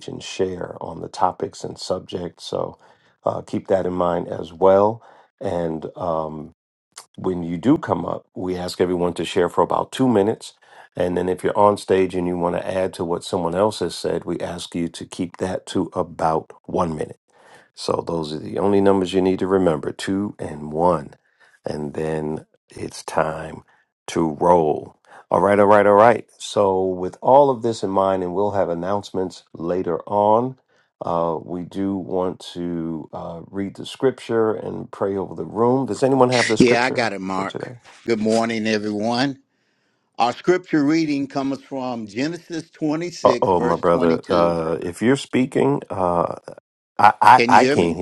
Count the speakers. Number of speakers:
2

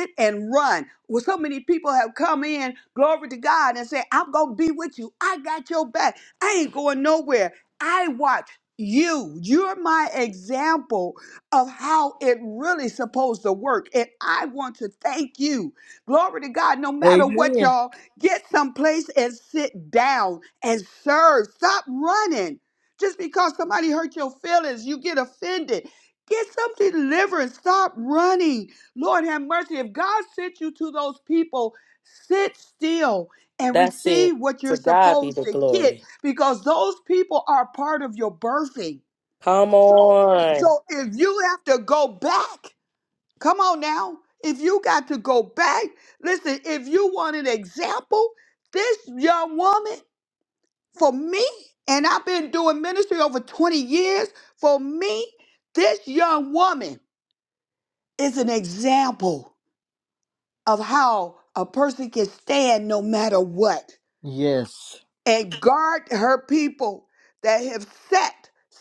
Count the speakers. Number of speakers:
3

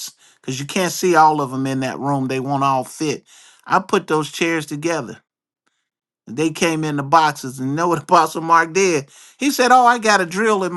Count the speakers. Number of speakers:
1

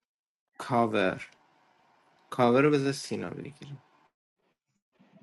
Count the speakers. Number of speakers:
1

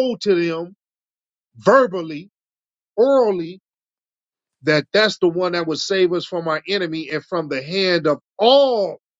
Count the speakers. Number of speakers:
1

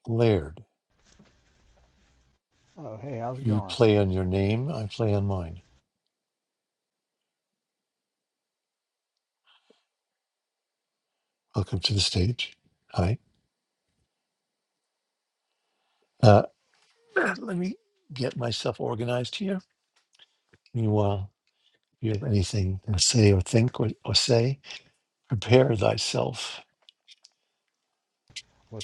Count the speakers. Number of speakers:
2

